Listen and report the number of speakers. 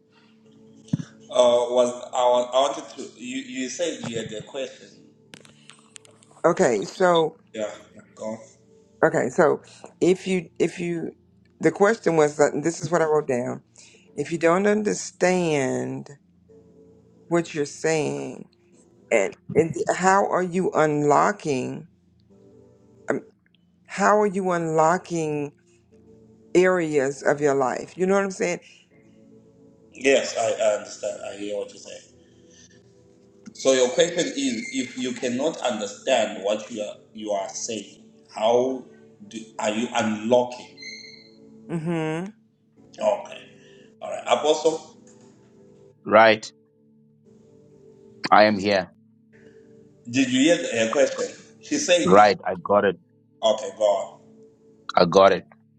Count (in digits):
3